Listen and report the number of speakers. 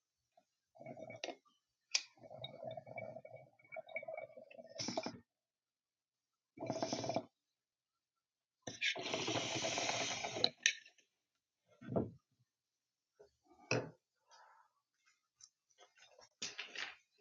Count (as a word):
zero